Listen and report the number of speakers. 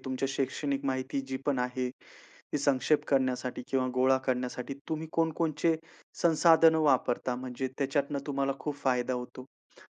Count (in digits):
1